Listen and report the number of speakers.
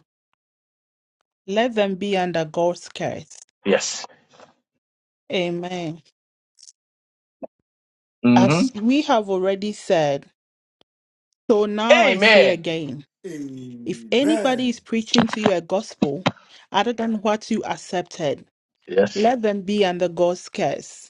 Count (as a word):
three